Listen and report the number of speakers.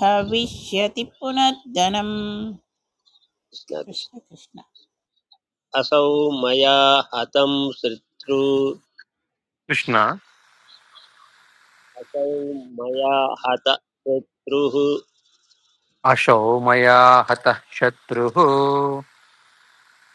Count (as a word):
three